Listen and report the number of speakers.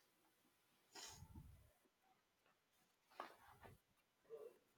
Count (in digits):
0